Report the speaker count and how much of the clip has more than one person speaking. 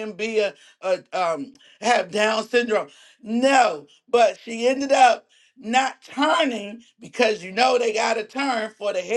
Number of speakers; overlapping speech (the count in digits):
1, no overlap